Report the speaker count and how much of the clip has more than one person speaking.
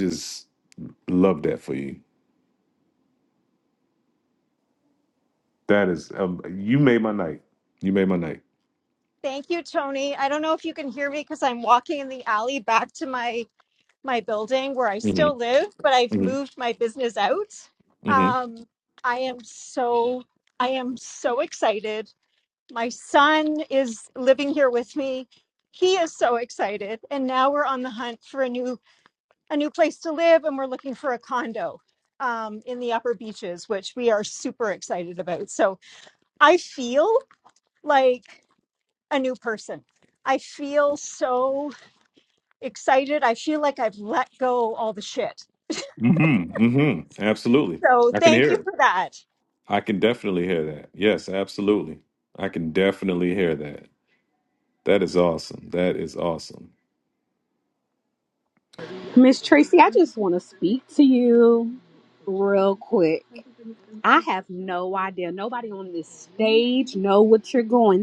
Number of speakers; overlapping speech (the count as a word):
three, about 2%